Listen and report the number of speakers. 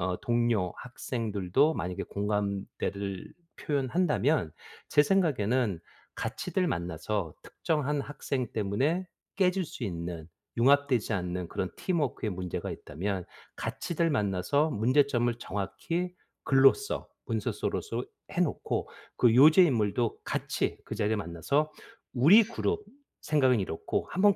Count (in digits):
1